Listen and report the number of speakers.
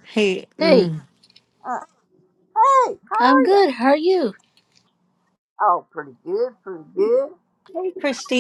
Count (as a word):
three